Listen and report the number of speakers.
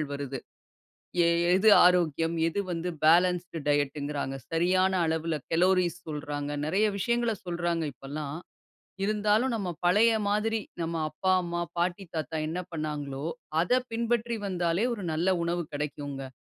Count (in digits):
1